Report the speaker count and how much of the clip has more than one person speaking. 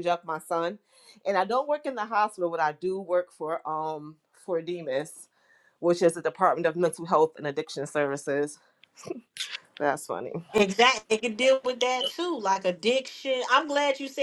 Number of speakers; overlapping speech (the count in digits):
2, no overlap